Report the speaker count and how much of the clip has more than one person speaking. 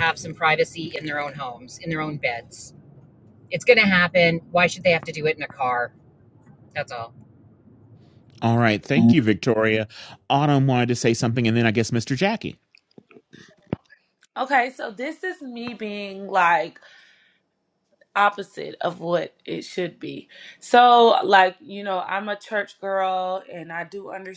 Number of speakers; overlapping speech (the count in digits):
3, no overlap